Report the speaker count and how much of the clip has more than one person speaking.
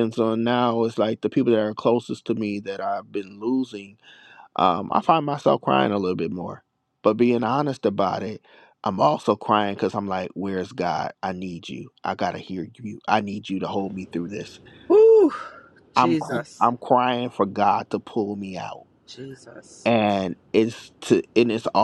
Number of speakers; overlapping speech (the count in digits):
2, about 2%